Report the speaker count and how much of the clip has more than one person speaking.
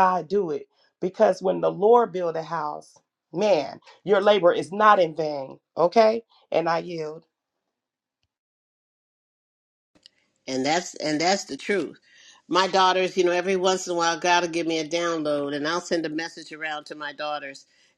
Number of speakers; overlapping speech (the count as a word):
two, no overlap